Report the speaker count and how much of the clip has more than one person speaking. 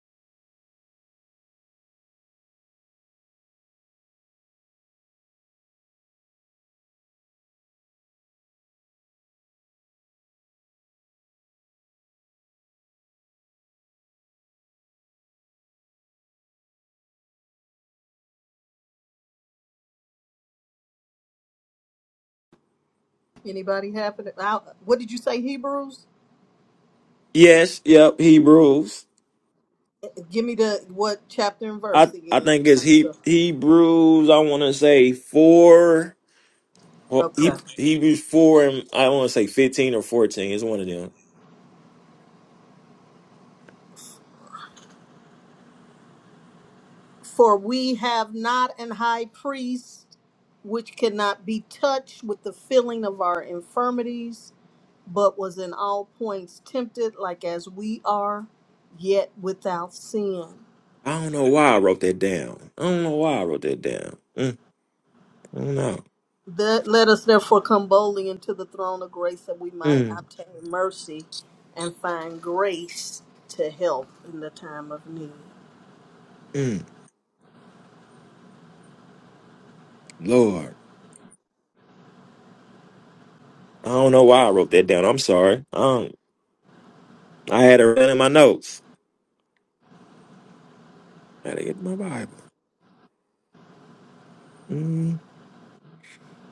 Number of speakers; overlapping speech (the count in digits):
2, about 2%